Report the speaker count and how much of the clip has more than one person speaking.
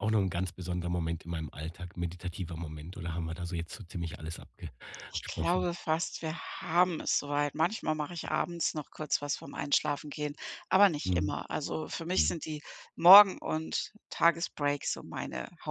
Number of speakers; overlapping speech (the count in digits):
2, about 4%